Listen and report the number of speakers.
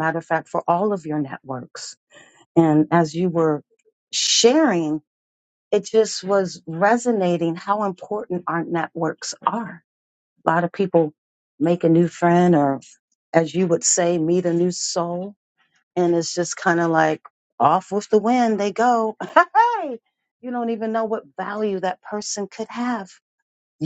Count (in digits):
1